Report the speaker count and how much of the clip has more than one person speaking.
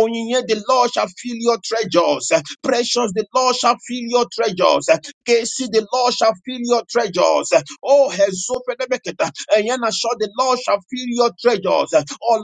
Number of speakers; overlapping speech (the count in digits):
1, no overlap